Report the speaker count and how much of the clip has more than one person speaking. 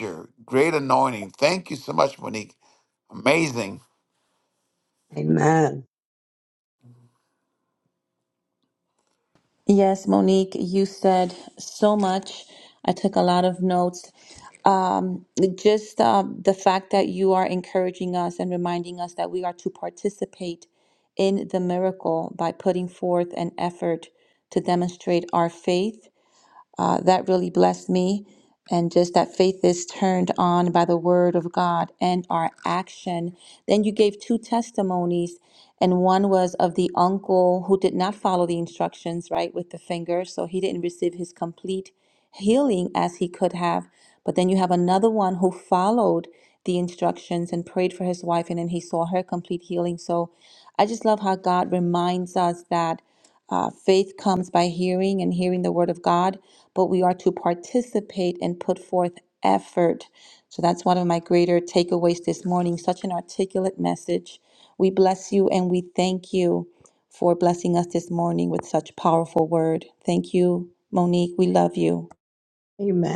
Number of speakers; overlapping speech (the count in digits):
3, no overlap